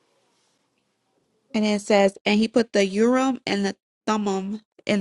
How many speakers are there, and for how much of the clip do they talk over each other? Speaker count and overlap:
one, no overlap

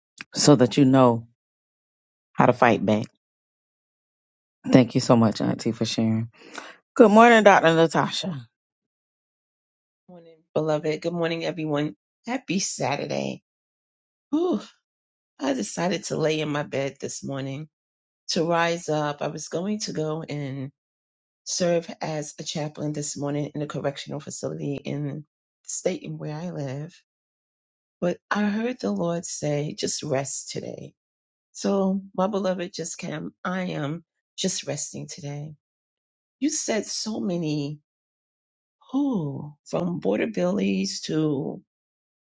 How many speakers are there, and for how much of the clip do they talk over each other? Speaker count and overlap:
two, no overlap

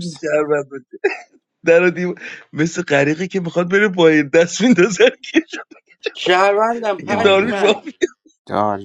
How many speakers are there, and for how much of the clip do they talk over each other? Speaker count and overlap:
three, about 11%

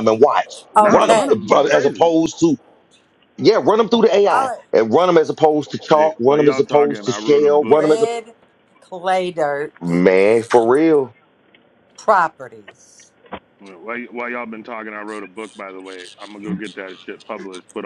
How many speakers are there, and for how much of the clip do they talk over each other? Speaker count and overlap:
three, about 21%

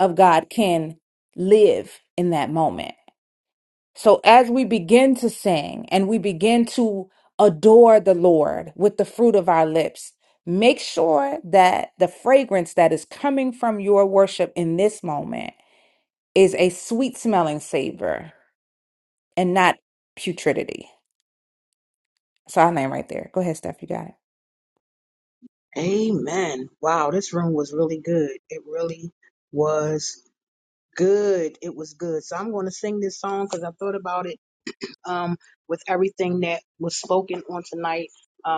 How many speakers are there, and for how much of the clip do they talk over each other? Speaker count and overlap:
two, no overlap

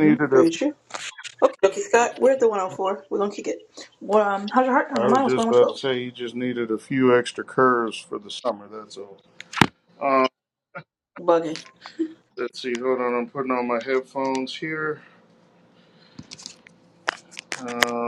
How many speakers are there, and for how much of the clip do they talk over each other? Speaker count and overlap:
two, about 8%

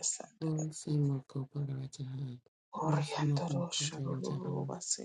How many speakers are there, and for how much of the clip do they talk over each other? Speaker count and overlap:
two, about 24%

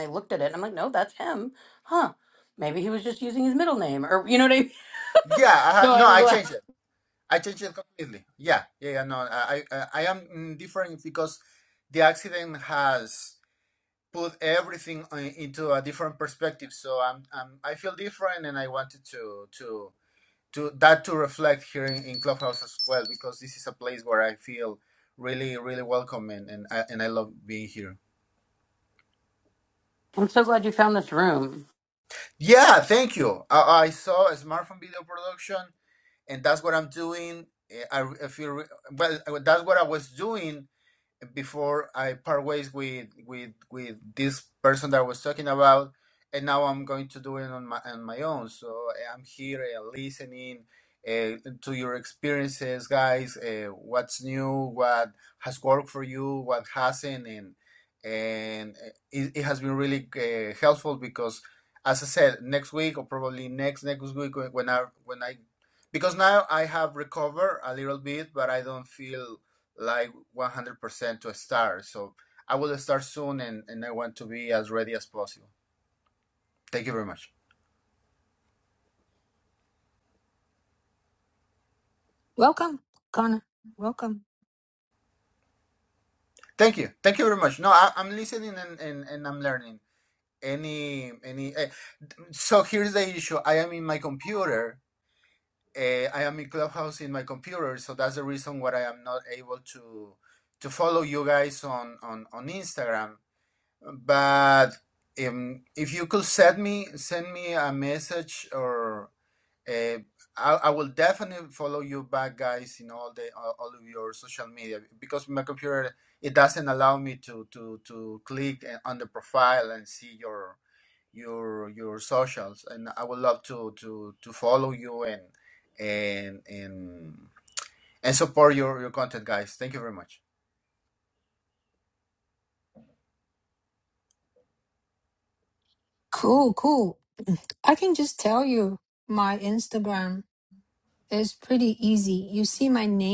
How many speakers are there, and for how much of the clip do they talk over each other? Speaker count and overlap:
three, about 1%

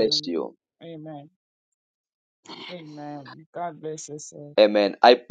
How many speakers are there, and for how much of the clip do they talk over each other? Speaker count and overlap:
two, about 9%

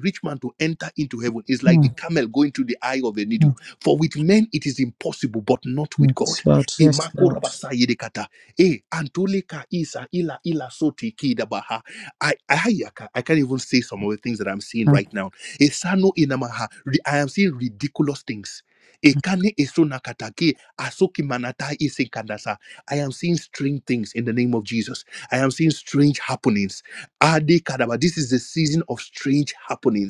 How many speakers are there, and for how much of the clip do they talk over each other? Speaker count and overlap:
two, about 4%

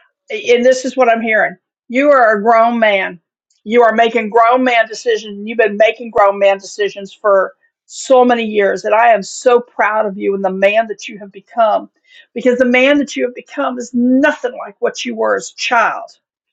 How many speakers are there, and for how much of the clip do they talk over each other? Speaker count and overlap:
one, no overlap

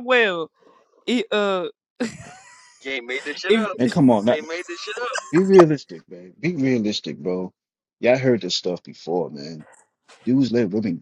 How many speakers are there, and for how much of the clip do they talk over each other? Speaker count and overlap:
three, about 3%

